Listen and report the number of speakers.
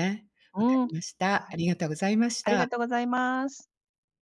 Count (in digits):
2